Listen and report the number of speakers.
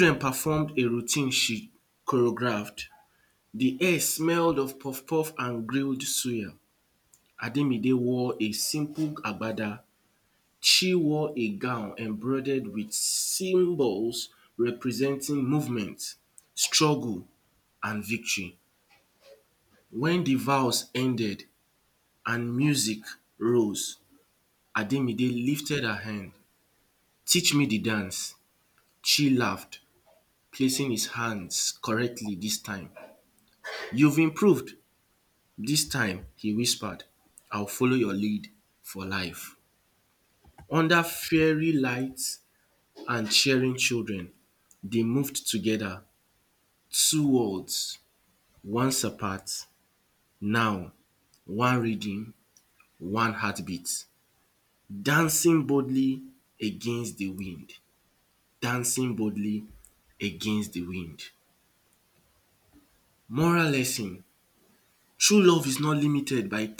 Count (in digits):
1